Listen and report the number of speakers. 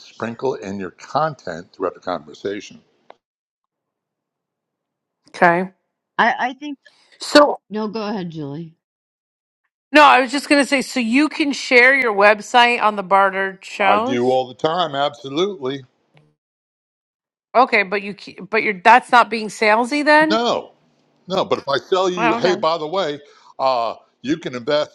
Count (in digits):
3